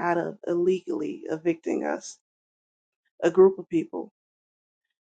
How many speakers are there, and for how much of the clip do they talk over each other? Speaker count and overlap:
one, no overlap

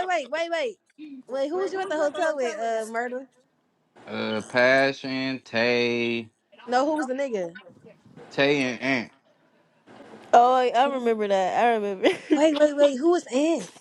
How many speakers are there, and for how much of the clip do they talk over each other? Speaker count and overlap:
three, about 1%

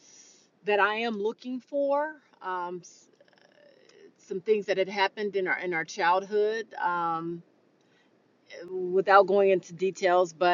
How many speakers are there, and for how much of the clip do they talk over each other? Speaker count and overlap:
one, no overlap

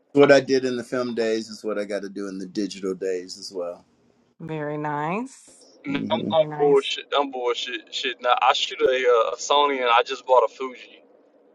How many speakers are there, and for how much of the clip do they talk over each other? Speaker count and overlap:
three, about 7%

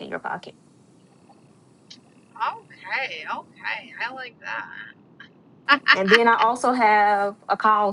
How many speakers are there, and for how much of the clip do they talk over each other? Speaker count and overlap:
two, no overlap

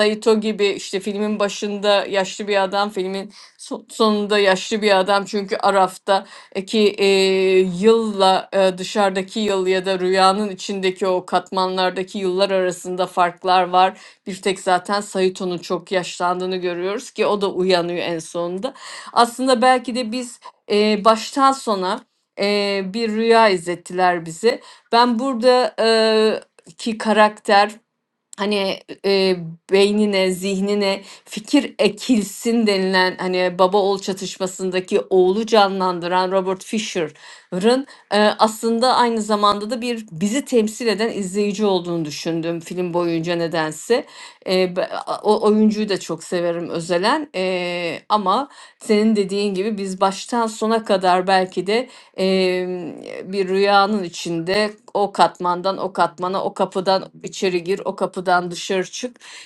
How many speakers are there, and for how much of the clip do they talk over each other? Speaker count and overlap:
one, no overlap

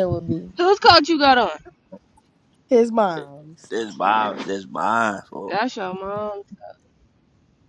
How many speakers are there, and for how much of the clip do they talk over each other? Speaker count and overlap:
three, under 1%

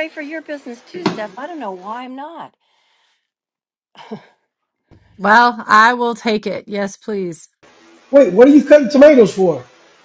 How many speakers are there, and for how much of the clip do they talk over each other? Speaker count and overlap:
three, no overlap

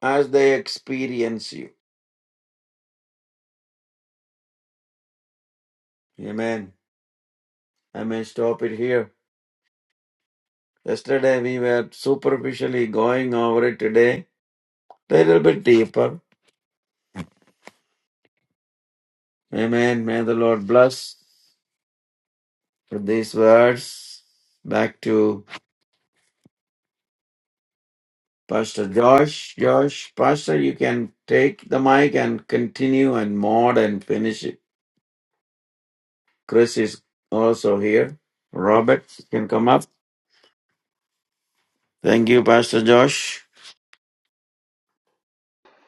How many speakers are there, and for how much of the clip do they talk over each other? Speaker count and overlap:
one, no overlap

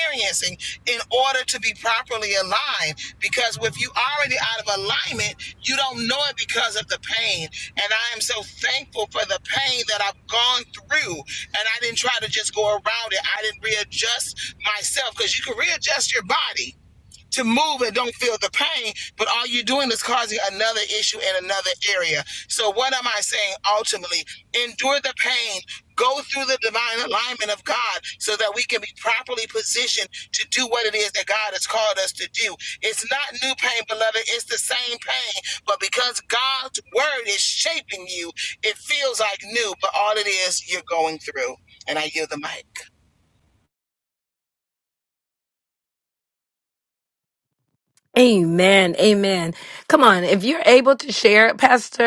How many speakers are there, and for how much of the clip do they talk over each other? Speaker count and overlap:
two, no overlap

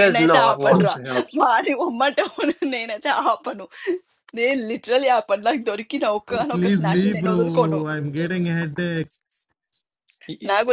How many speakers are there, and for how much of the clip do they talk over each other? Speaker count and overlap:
three, about 18%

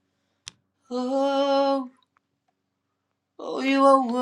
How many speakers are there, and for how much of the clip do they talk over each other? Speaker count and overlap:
one, no overlap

